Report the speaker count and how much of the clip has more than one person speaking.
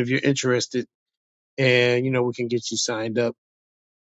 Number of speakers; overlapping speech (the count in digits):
1, no overlap